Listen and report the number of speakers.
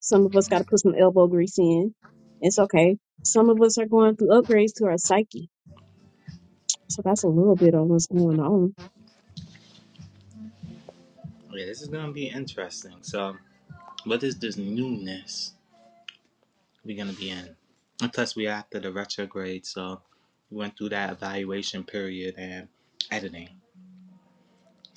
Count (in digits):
2